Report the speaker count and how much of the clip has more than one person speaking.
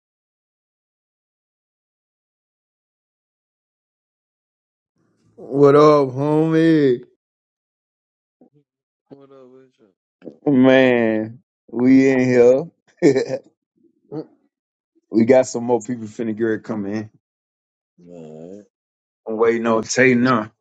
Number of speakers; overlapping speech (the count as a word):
two, no overlap